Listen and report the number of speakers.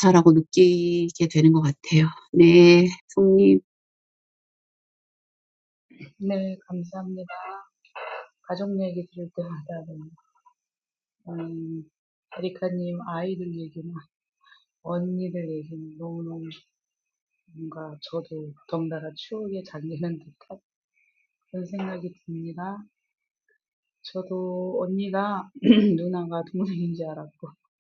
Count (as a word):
two